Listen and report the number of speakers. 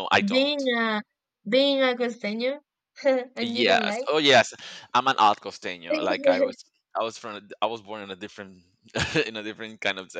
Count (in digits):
2